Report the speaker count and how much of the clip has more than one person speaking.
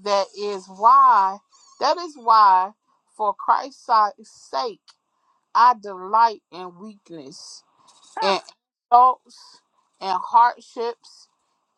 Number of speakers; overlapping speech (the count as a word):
one, no overlap